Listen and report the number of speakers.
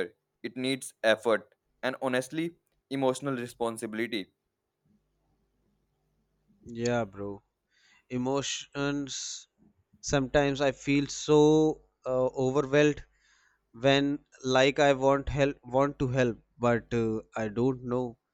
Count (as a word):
two